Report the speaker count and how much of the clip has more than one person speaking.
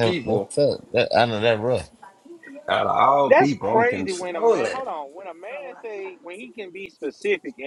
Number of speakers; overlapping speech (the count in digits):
3, about 27%